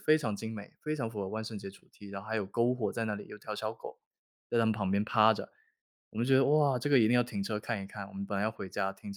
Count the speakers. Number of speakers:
one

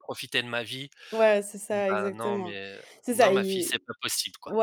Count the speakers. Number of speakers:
two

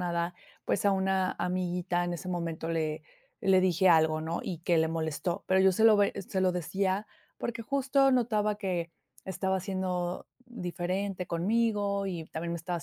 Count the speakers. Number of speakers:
one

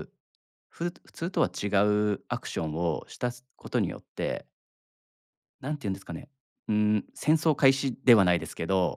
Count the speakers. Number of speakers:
one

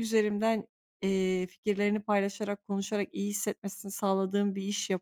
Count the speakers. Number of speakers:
one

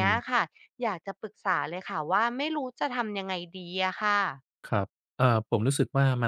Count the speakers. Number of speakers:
two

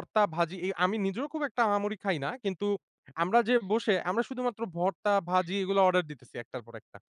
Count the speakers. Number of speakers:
one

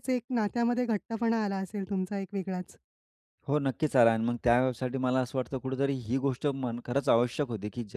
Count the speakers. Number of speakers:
two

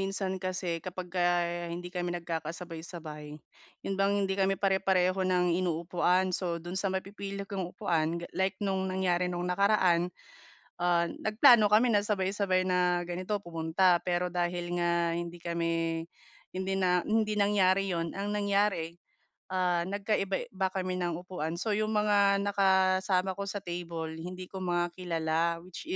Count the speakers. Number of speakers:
one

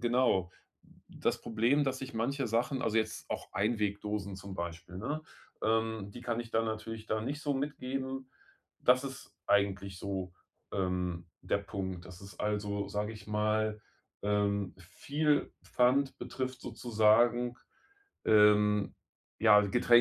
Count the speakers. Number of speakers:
one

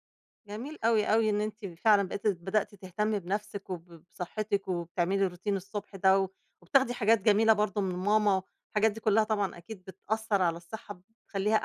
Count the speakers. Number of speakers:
one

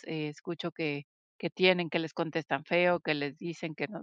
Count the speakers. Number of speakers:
one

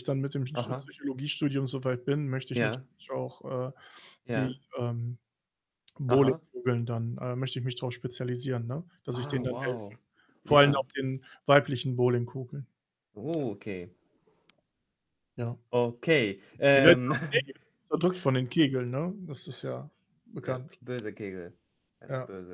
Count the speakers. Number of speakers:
two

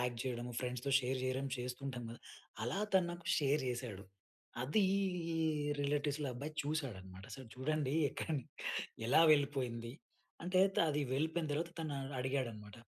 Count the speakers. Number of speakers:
one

